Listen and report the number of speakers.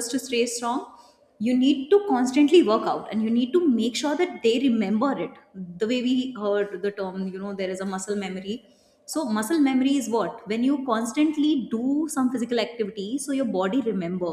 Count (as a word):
one